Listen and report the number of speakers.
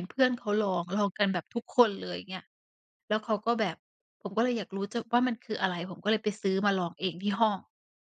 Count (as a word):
one